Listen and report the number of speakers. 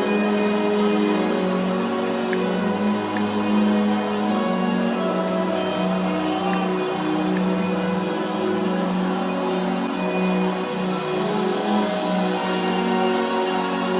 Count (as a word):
zero